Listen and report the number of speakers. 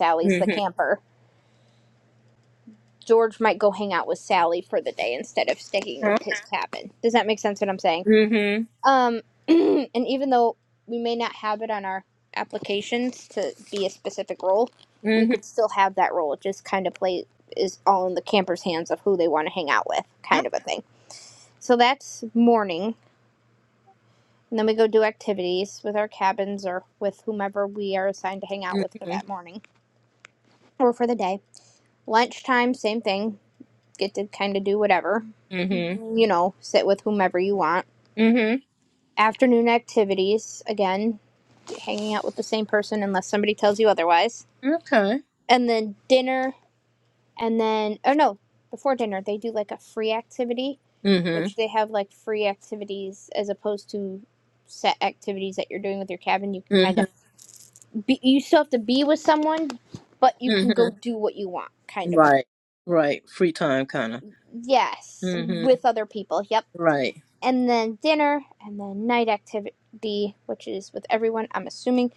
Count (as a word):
two